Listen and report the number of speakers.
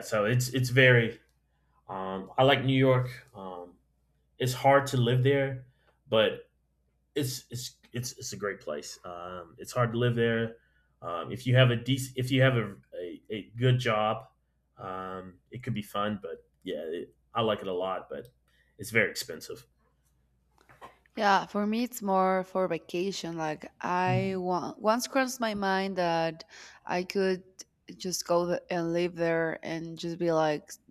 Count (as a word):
two